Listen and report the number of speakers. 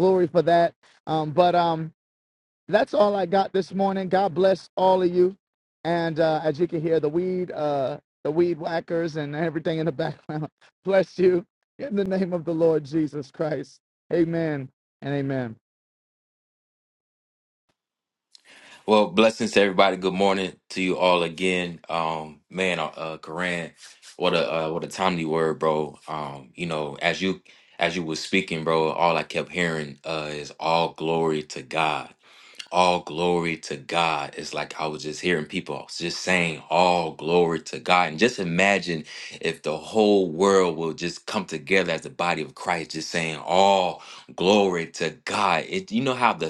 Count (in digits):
2